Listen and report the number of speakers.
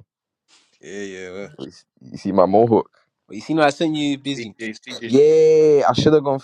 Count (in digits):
3